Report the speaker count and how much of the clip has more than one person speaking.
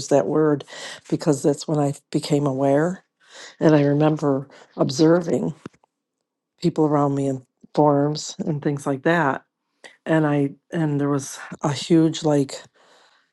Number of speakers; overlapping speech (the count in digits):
1, no overlap